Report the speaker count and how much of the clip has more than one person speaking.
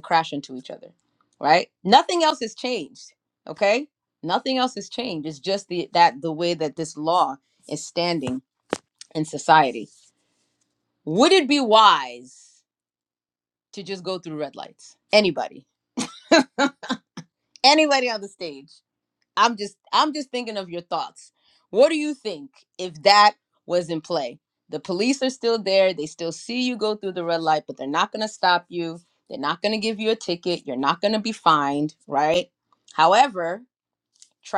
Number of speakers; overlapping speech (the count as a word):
one, no overlap